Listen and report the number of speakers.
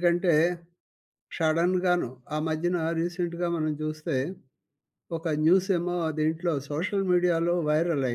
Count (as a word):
one